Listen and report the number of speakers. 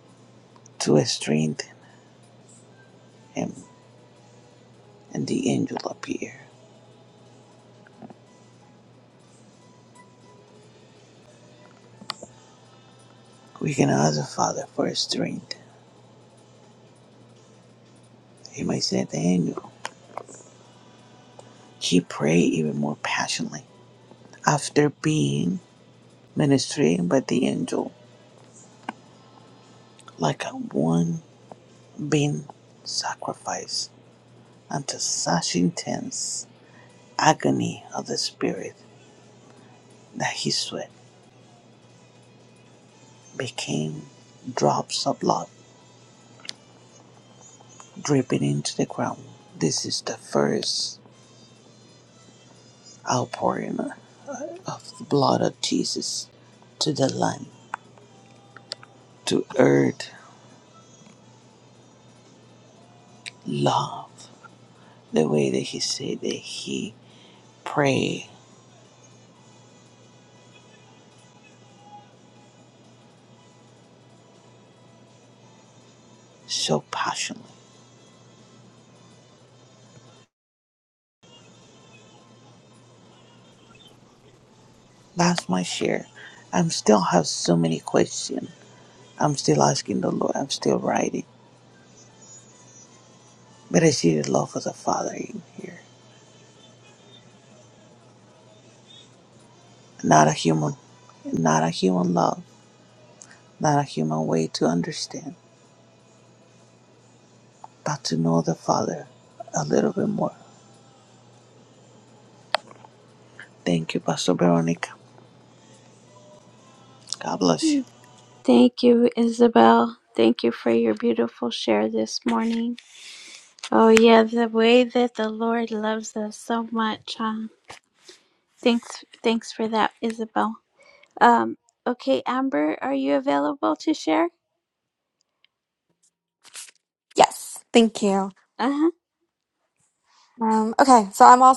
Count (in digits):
3